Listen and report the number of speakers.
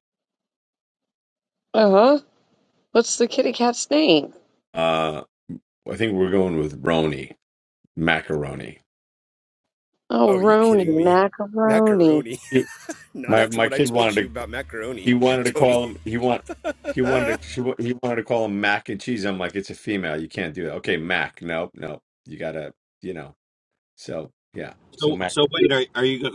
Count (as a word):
four